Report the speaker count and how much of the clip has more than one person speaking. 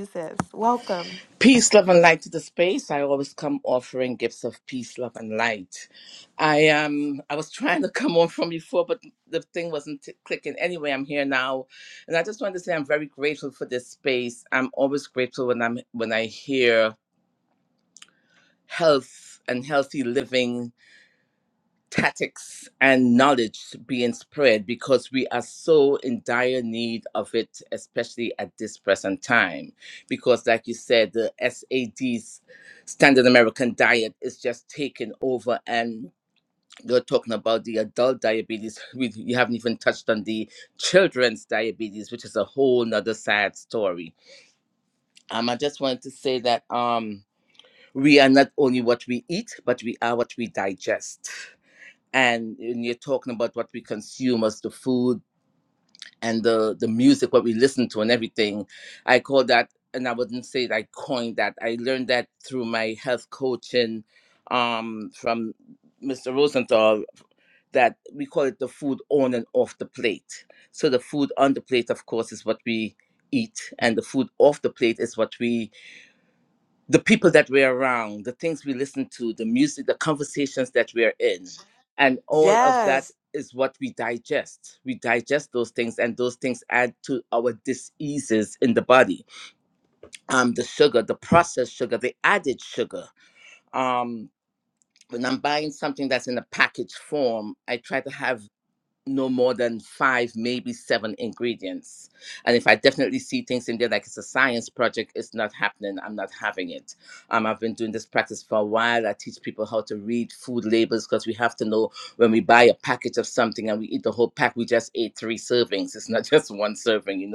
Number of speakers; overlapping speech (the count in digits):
2, about 1%